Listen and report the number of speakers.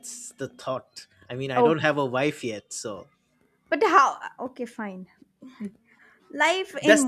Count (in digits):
2